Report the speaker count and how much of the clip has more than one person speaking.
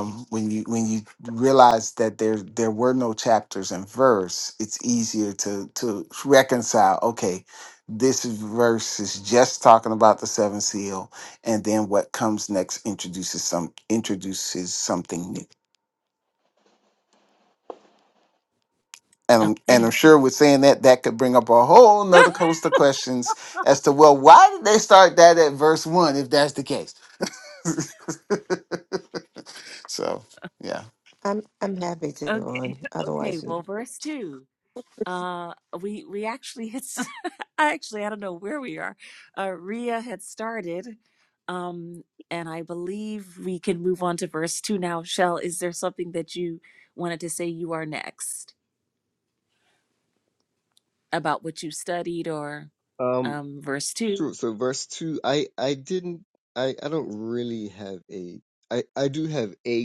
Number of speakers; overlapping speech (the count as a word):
four, about 4%